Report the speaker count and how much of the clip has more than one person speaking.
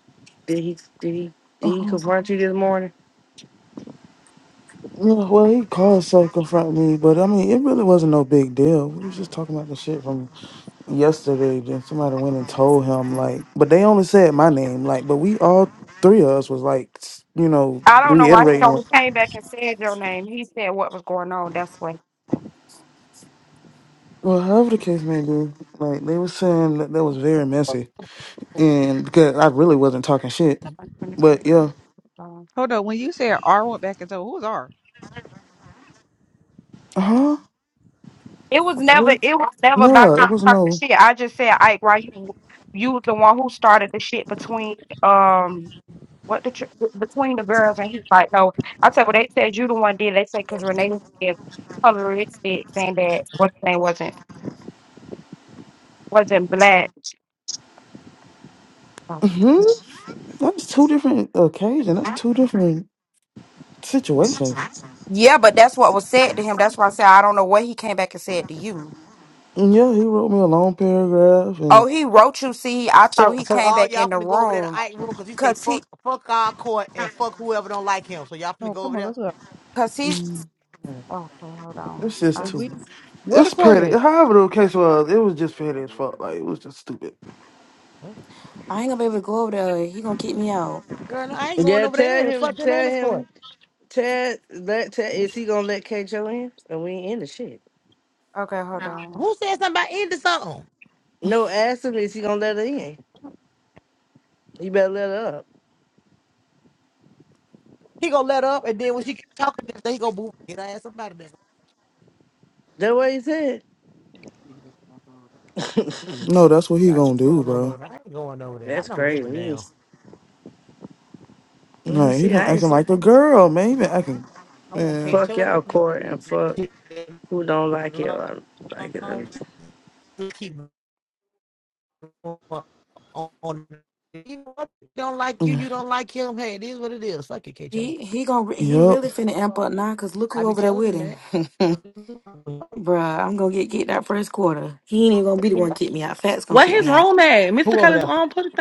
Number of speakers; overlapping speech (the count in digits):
7, about 10%